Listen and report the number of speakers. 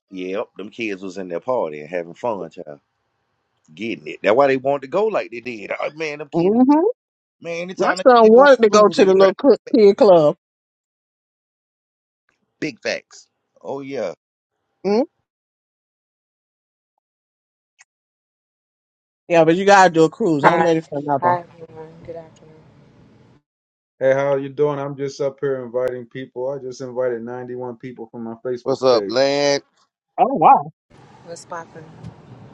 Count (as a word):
four